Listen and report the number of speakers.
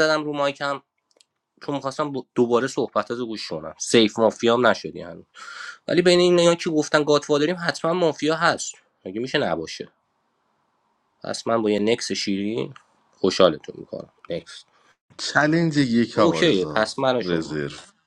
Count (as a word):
two